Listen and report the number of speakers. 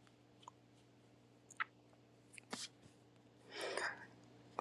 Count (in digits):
0